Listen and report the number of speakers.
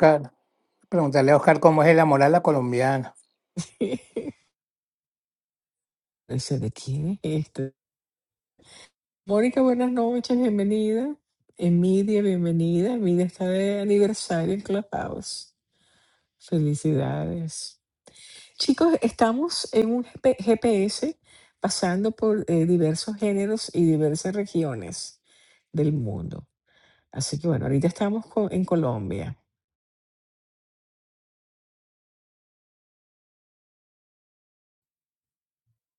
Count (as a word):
two